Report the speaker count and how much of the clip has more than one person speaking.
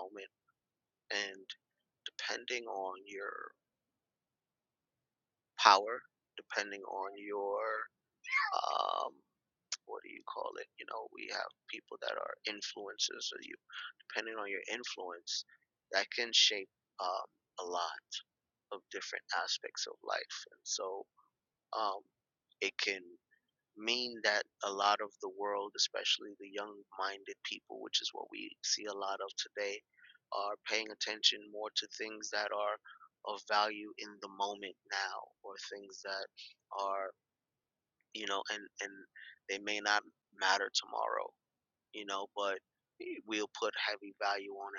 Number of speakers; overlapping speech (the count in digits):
1, no overlap